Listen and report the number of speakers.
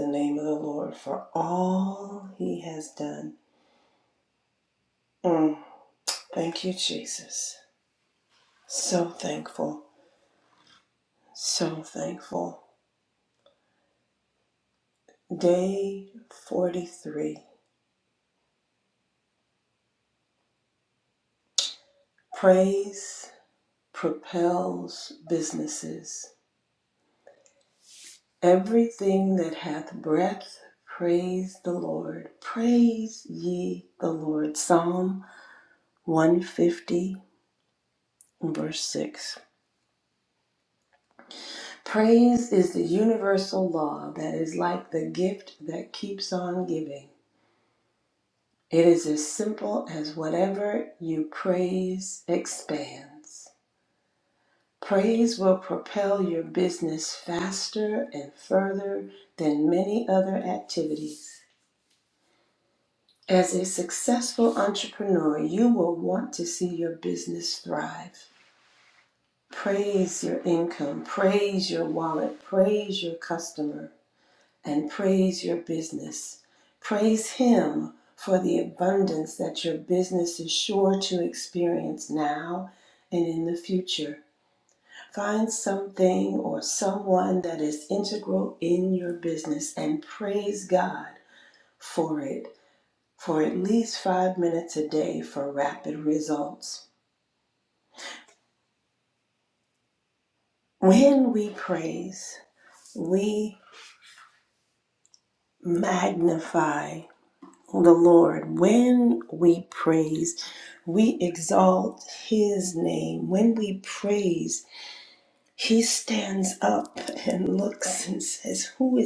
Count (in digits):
1